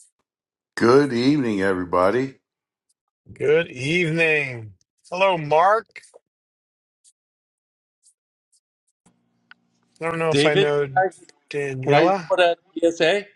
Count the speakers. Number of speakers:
3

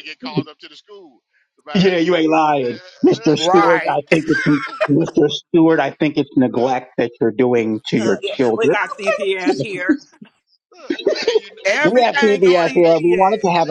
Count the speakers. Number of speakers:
3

